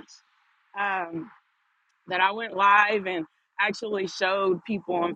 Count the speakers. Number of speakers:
one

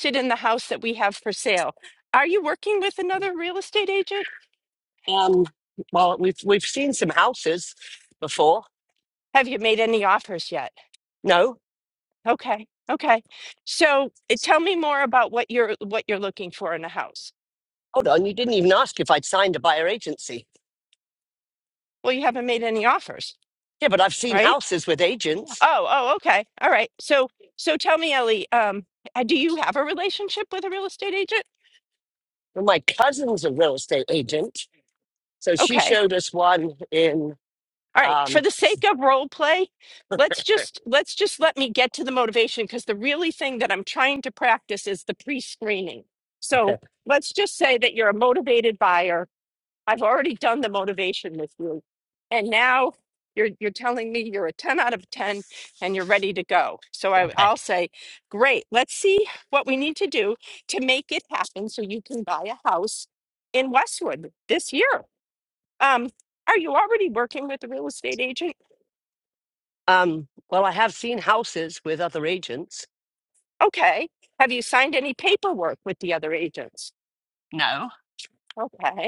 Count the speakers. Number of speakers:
two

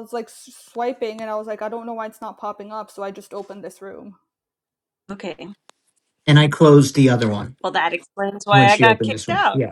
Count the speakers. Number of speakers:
three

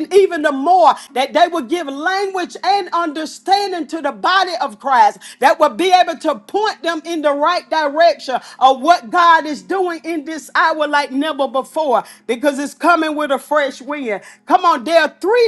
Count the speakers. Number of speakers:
one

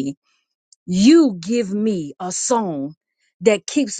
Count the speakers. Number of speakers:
one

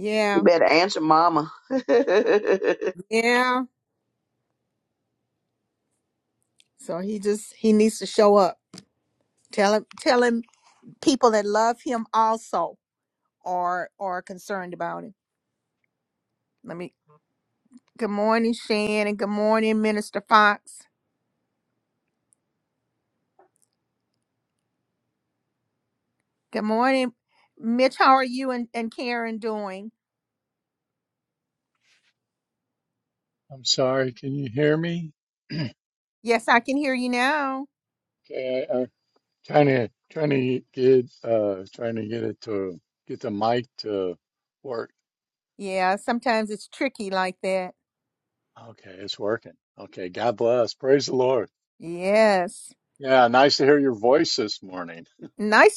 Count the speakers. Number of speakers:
three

